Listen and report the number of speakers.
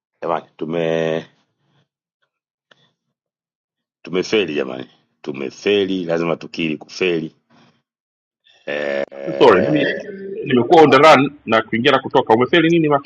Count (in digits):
2